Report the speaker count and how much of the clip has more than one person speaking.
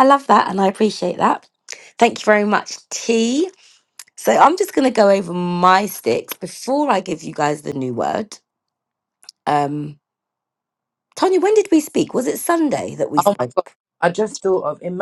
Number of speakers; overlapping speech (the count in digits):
2, about 1%